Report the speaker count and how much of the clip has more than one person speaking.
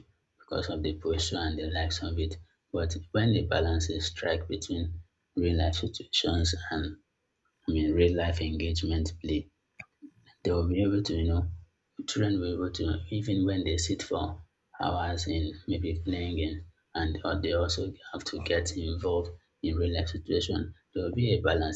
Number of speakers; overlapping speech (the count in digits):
1, no overlap